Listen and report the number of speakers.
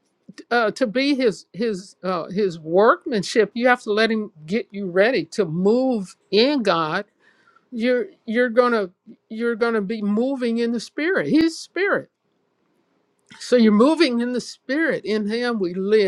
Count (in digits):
1